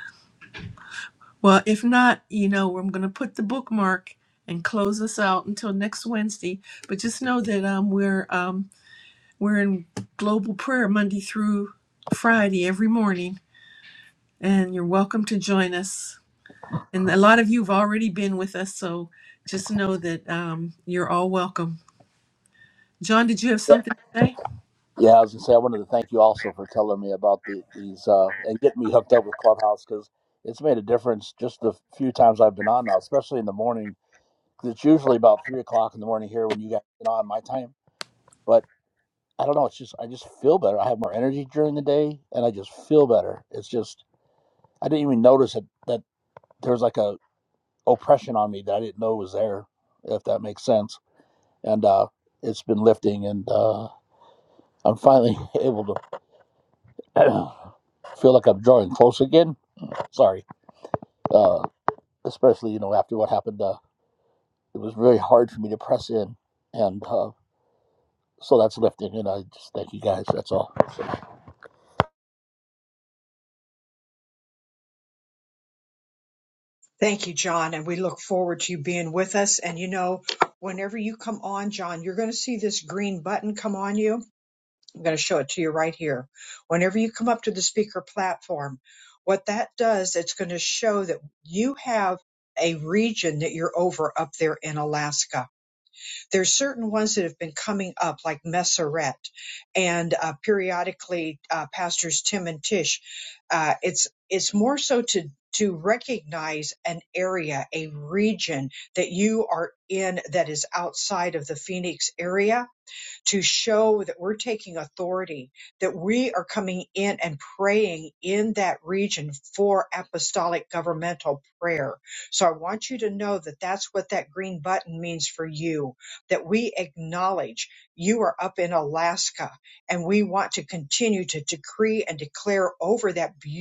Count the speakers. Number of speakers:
3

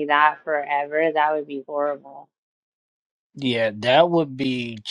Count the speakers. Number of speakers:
2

